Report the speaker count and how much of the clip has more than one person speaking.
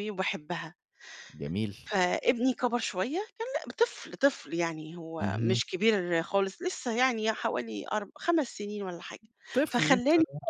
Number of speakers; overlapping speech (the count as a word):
two, about 10%